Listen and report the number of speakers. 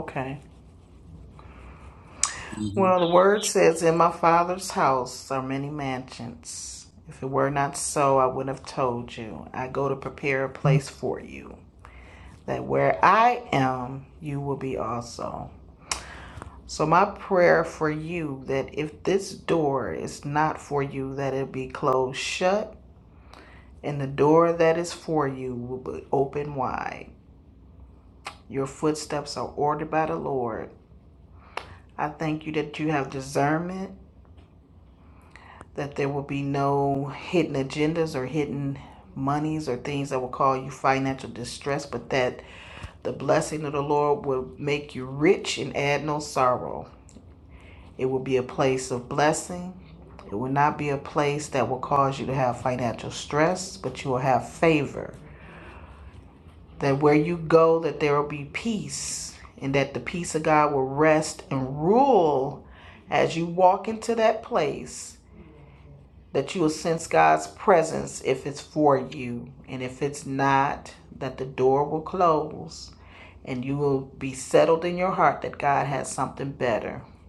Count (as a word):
one